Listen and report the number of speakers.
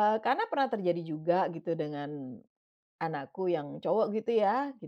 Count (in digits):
1